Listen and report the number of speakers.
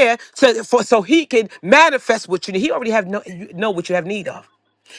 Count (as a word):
one